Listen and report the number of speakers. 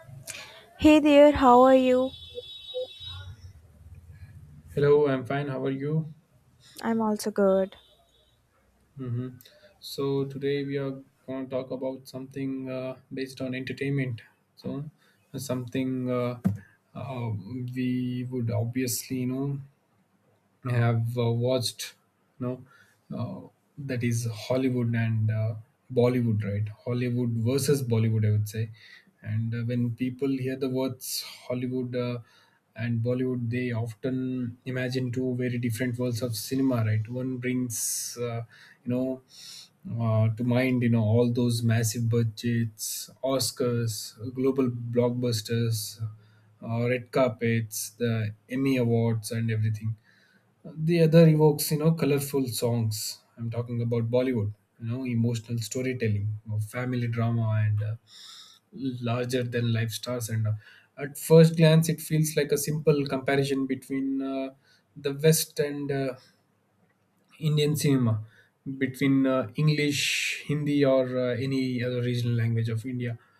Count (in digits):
2